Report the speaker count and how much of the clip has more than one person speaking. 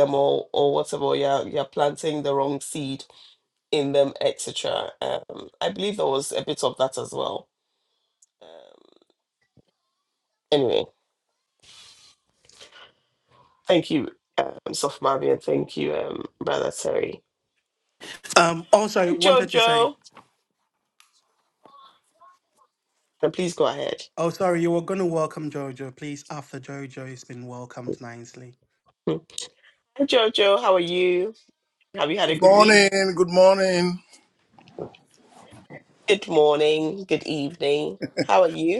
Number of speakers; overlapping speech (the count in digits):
3, about 4%